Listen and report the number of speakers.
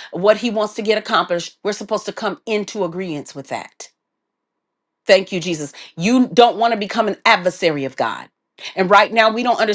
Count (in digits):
1